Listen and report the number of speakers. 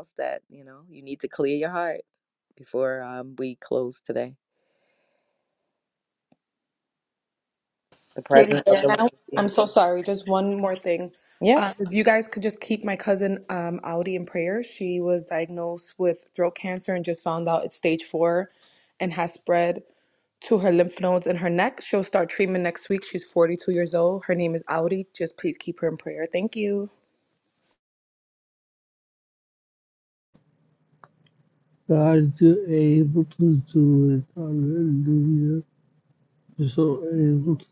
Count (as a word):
three